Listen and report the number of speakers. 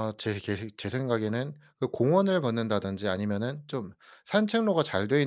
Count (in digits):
1